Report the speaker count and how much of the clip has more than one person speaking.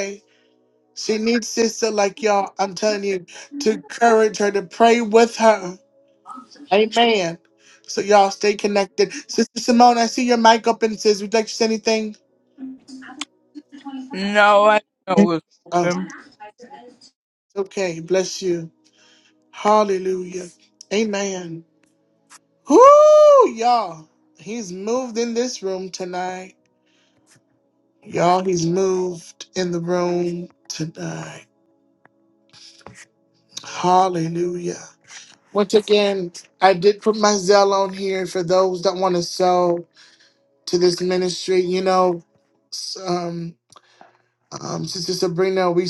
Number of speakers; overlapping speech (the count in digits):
2, under 1%